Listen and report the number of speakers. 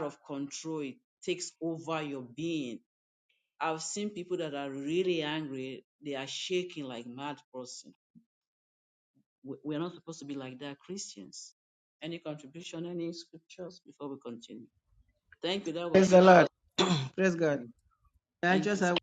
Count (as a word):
two